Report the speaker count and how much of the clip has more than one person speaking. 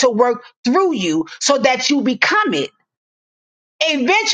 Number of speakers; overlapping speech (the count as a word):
one, no overlap